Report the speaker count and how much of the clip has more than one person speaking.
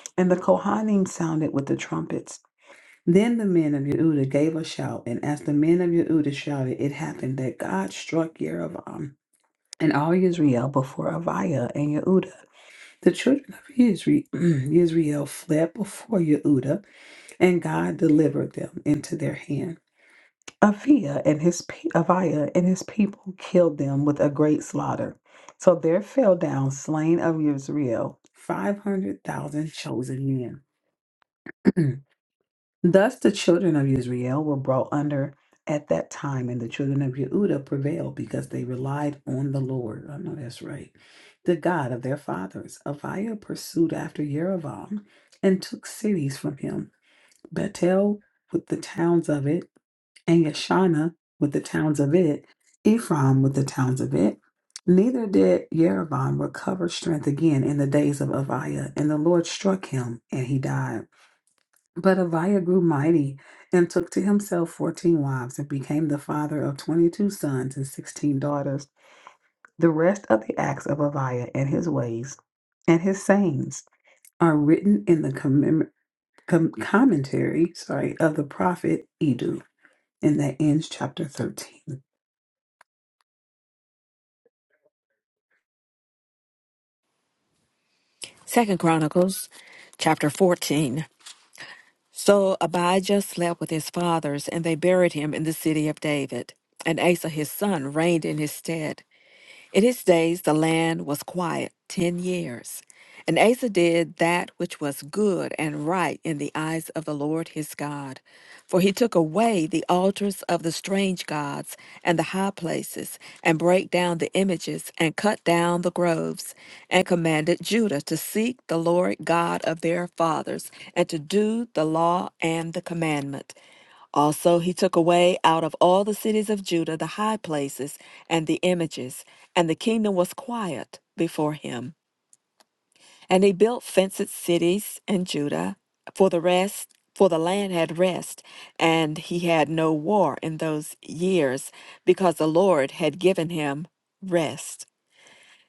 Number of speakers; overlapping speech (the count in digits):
2, no overlap